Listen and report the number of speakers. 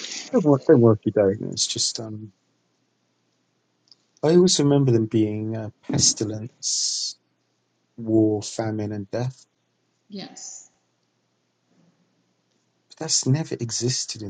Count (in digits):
2